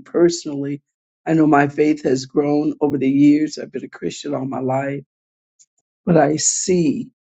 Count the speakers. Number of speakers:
one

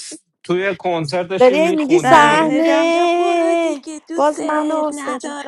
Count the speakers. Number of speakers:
three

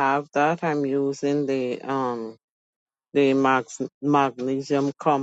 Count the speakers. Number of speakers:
one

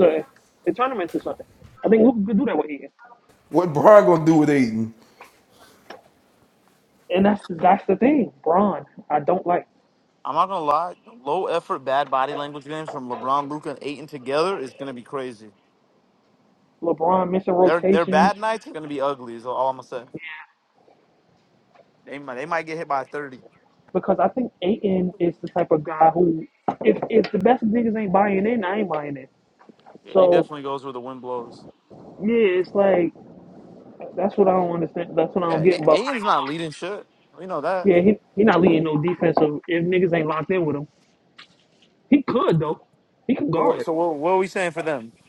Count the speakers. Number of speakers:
three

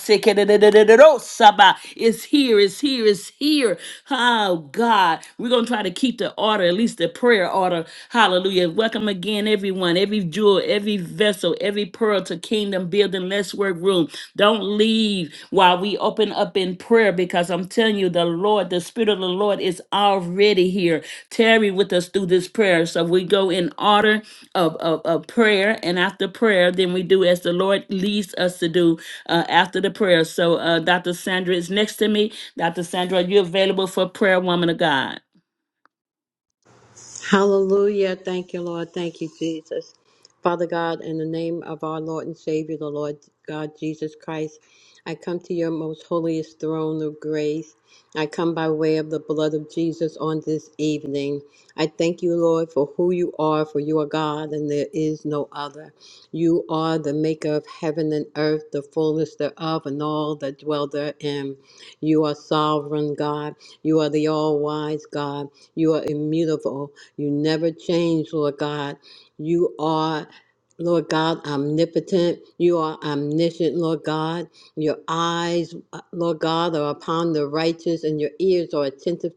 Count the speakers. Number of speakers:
two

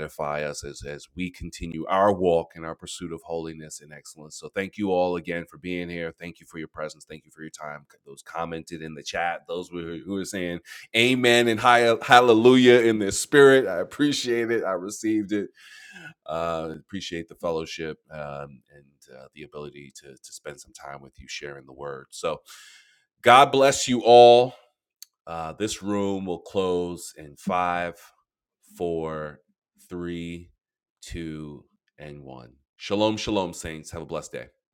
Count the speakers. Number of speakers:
one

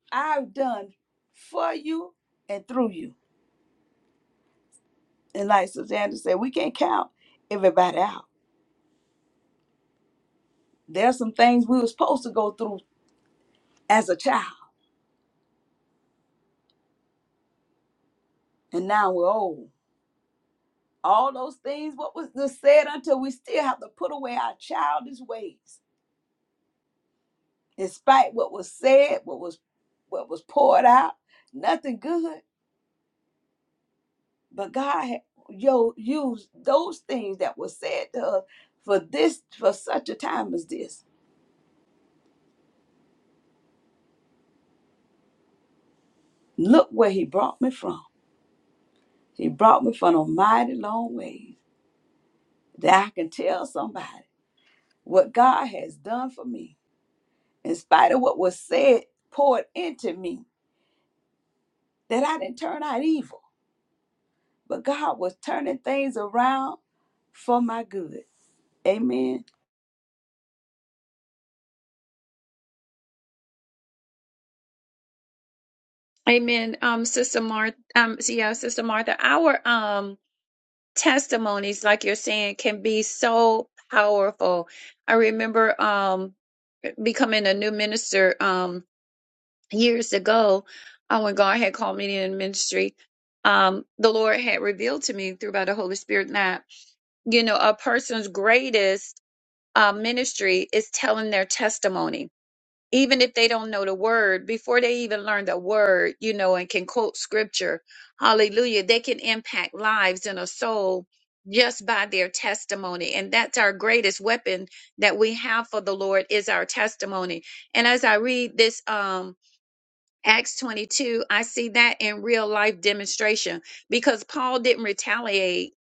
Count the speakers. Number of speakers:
two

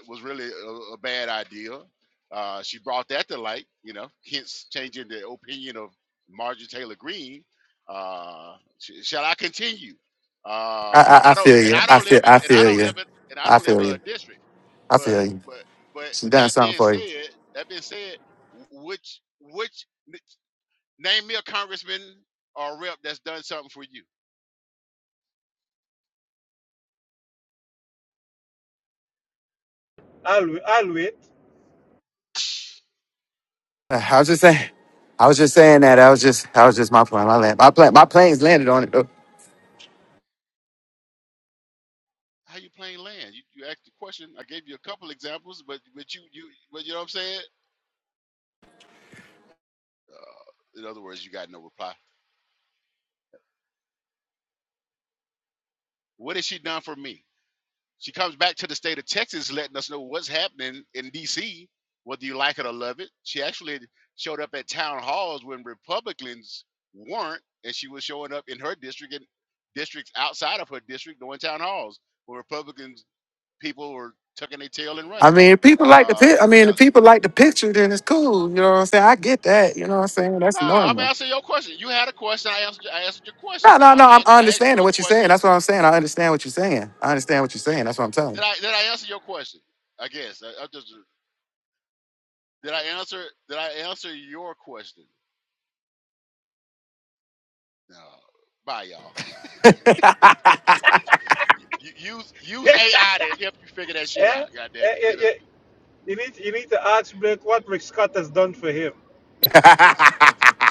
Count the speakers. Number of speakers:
three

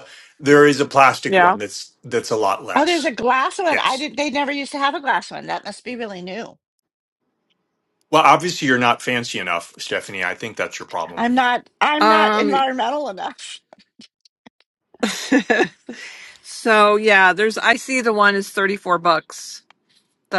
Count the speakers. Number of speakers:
three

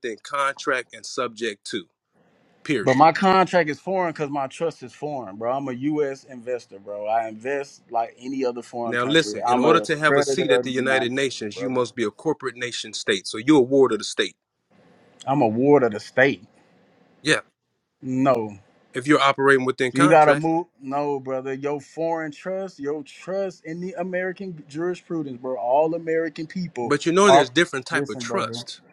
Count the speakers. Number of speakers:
two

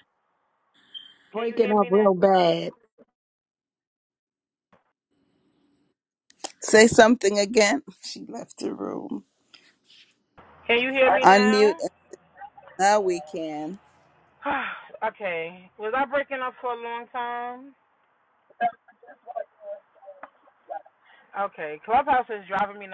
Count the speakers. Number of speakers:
three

